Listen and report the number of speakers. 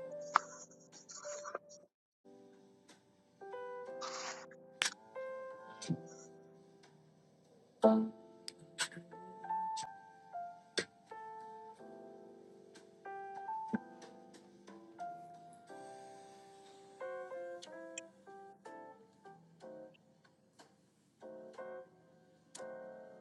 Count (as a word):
zero